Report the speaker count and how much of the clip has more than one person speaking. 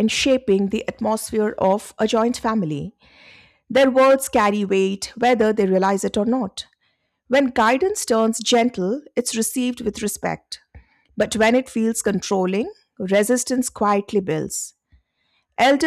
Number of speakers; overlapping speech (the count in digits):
1, no overlap